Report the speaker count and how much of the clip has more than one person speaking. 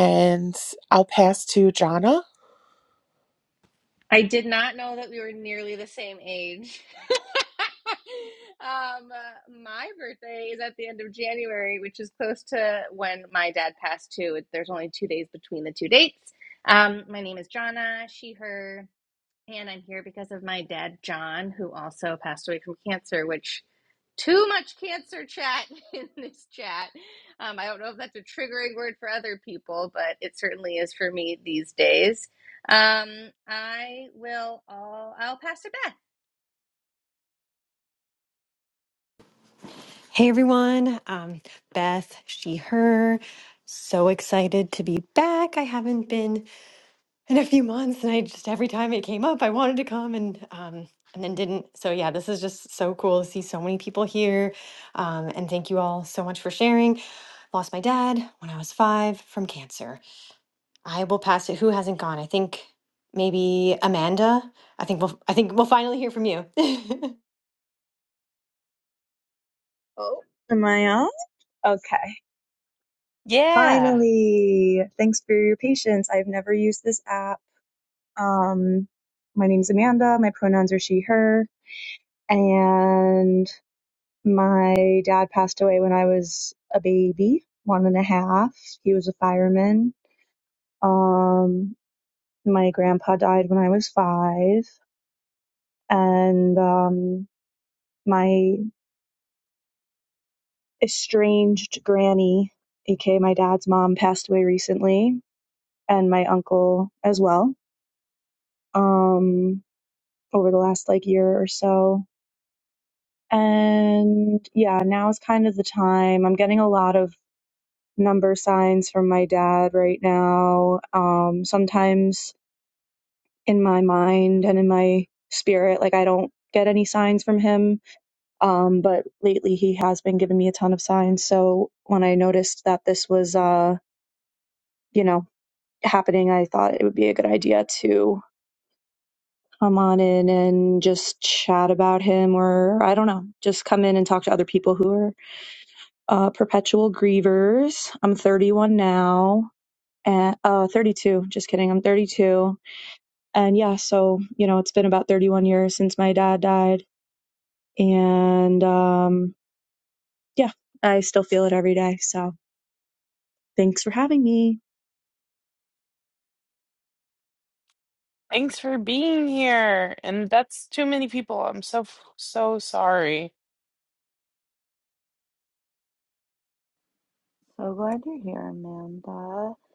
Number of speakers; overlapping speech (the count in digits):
6, under 1%